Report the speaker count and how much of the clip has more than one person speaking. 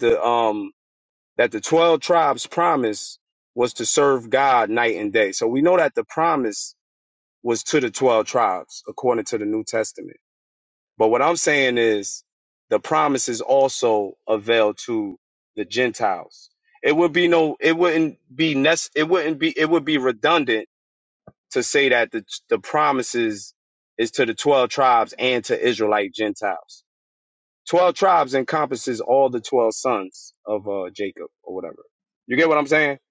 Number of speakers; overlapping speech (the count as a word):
one, no overlap